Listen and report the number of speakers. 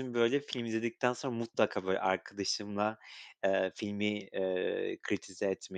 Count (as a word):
one